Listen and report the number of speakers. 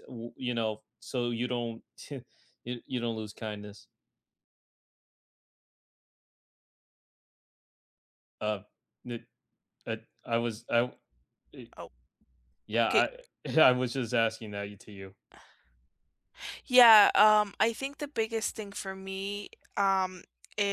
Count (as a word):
two